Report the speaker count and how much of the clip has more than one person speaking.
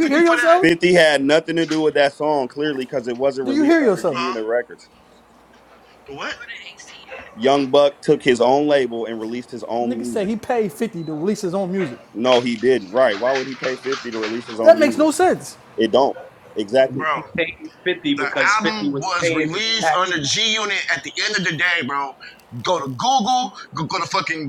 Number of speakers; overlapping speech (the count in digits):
4, about 20%